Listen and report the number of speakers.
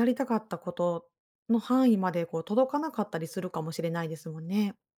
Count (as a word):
one